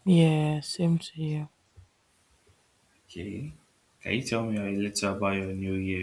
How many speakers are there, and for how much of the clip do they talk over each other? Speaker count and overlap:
2, no overlap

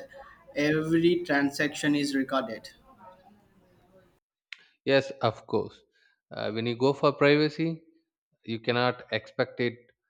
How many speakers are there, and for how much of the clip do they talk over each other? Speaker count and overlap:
2, no overlap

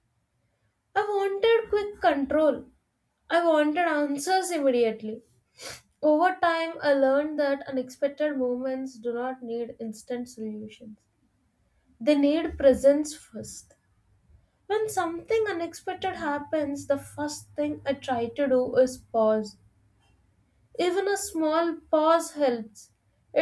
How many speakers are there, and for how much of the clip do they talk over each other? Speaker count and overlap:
1, no overlap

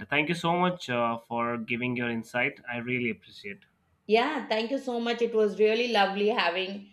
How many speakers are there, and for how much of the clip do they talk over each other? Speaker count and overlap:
2, no overlap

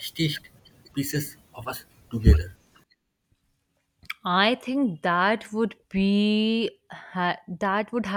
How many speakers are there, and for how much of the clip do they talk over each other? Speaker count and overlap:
2, no overlap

